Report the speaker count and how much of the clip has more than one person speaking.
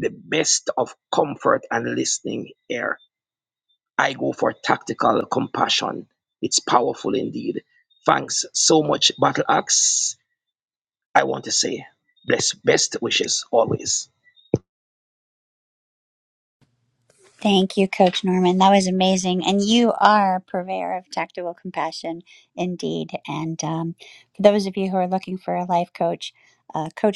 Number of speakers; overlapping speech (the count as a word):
two, no overlap